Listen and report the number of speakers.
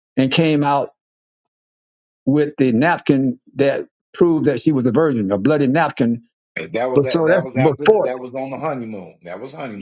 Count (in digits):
2